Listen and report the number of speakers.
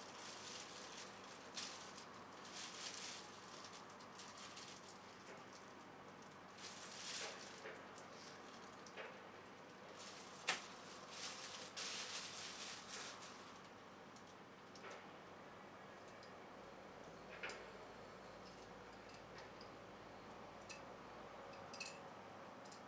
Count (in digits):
0